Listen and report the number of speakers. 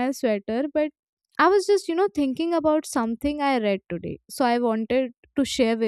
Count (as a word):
one